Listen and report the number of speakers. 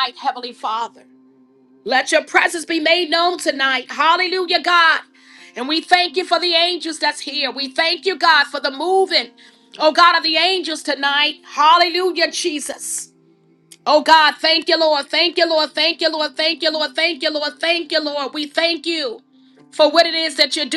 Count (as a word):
one